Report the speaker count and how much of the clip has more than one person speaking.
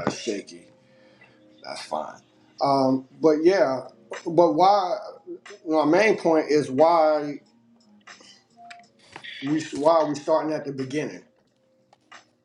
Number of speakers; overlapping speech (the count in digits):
1, no overlap